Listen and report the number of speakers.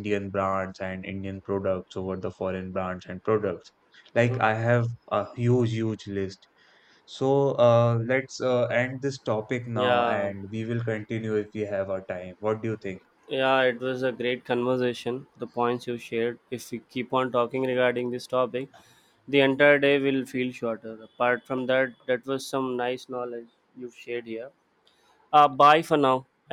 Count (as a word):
two